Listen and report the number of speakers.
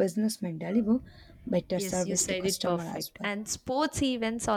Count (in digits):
2